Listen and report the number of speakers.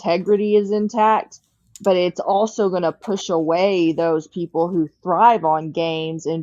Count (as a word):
one